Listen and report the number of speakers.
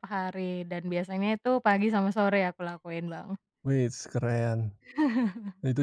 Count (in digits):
2